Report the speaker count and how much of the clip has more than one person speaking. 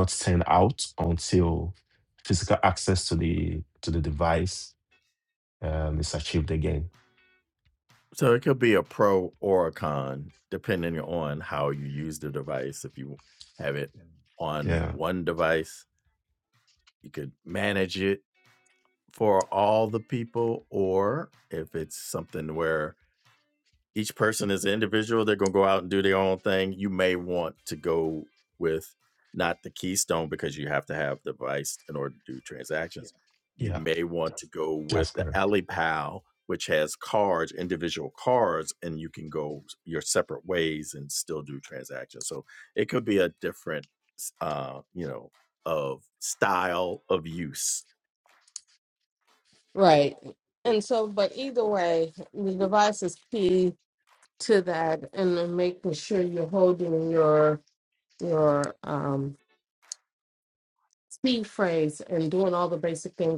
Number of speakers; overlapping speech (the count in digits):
3, about 2%